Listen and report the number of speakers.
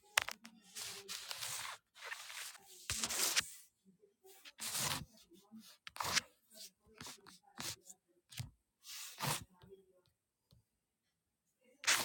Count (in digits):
0